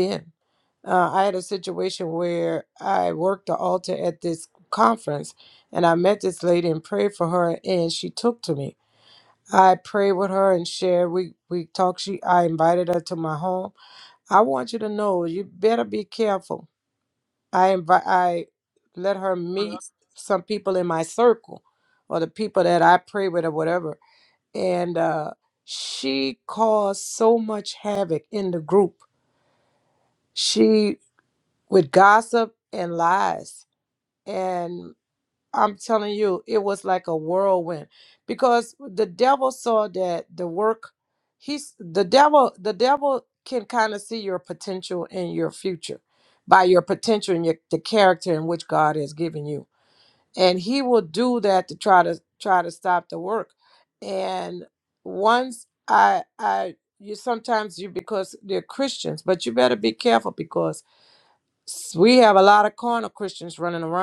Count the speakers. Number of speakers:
one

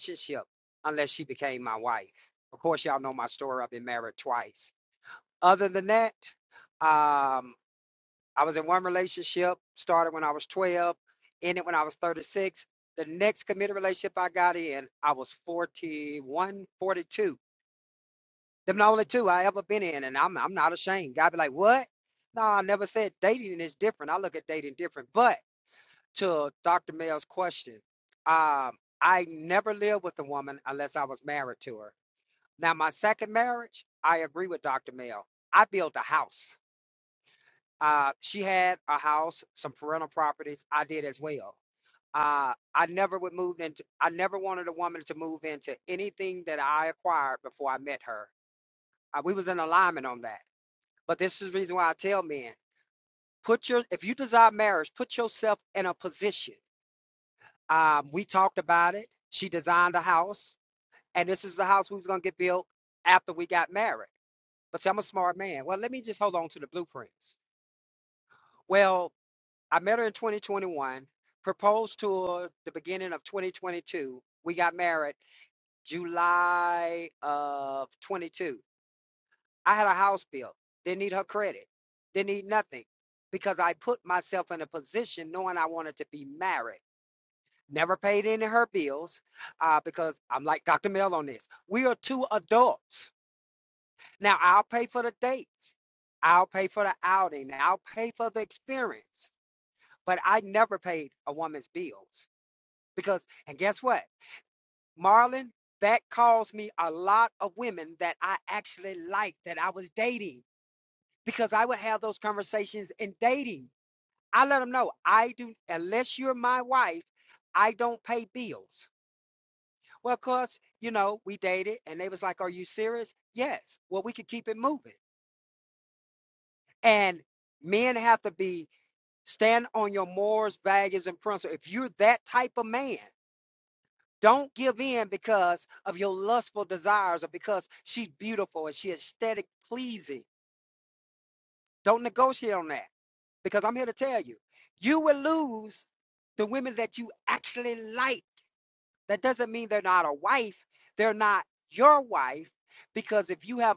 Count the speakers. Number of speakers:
one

